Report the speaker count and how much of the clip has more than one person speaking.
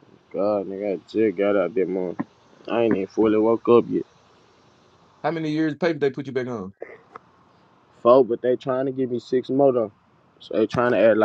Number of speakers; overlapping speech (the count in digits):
2, no overlap